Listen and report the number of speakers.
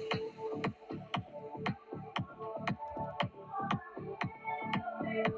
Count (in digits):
0